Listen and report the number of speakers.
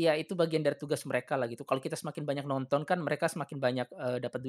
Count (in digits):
1